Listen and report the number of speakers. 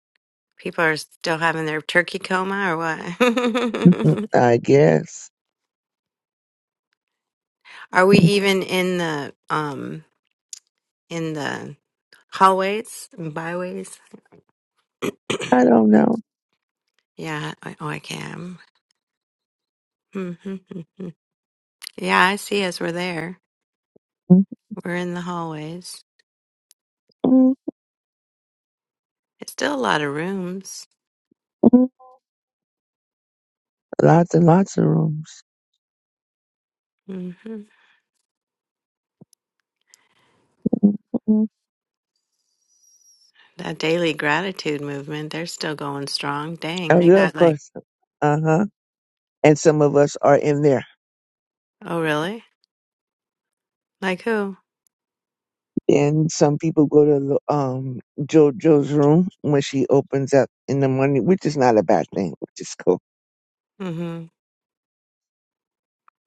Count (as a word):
two